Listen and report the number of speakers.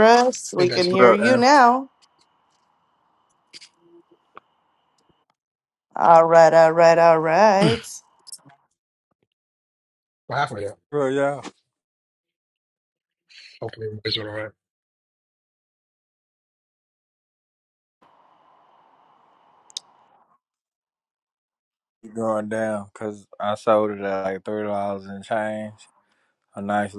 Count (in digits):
3